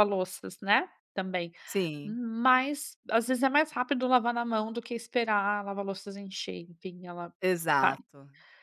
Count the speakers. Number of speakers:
two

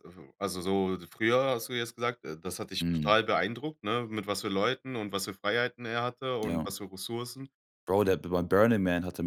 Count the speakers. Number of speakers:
two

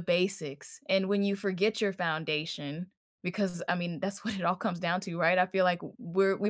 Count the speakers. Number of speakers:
one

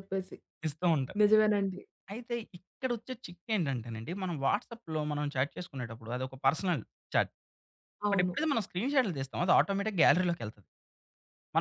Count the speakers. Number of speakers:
two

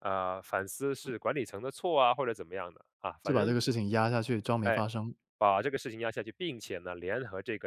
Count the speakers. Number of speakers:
two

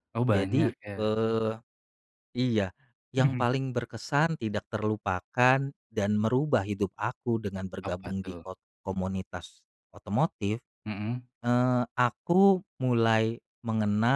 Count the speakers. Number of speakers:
two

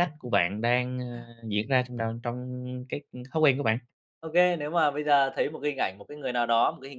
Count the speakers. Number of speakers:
two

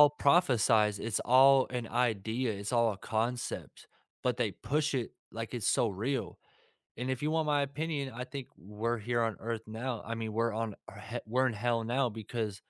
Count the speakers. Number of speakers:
one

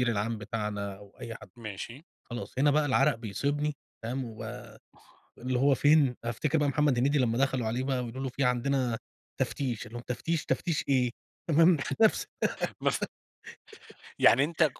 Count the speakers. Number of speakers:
two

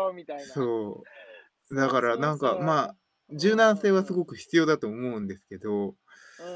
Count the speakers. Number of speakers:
two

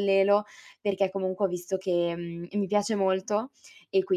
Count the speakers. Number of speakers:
one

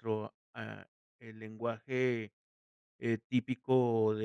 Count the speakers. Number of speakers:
one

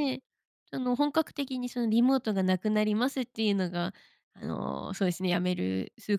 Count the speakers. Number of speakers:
one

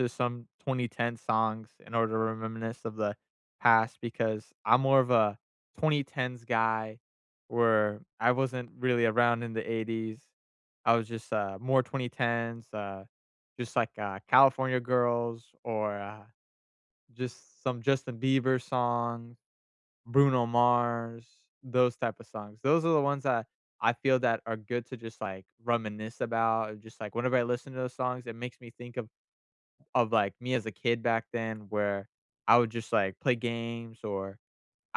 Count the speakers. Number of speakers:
one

